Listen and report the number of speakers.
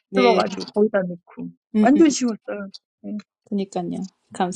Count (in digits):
2